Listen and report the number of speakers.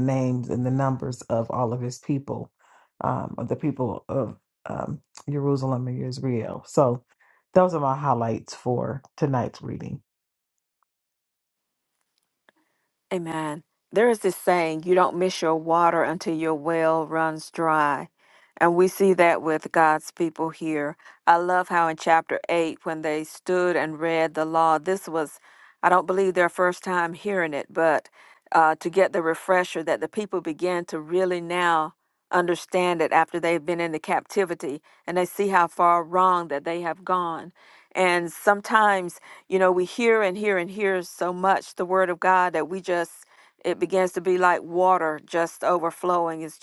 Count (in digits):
2